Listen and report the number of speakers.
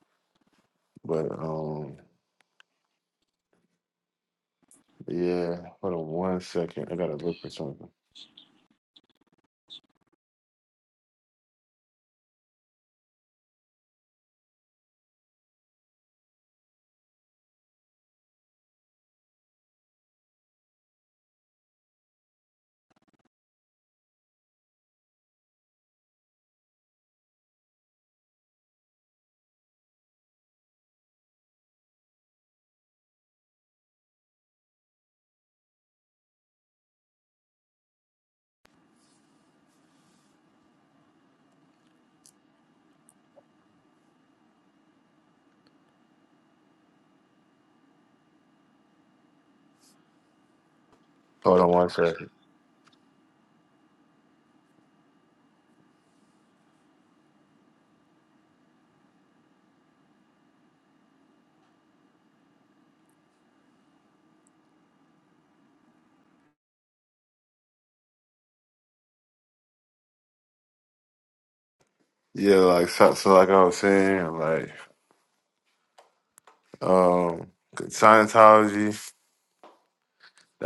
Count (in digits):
1